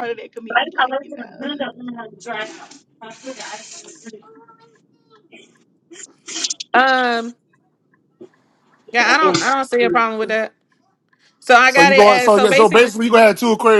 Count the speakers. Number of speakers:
four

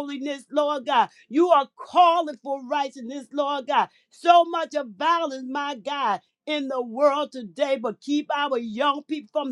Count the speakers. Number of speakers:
one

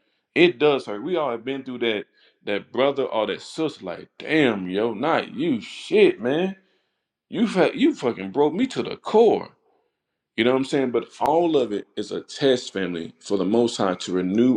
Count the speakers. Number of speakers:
one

